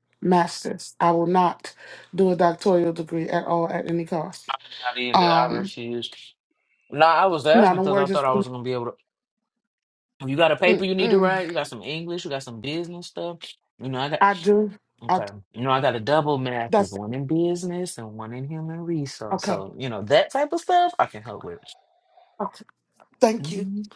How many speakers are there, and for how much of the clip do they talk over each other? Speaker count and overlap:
2, about 13%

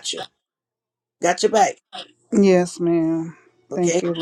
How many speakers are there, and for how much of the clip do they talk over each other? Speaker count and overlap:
2, about 8%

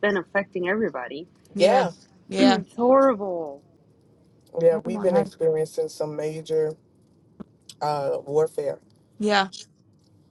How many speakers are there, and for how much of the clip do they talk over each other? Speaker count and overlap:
3, about 10%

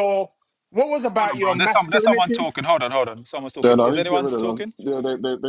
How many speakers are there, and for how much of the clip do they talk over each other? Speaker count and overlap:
3, about 44%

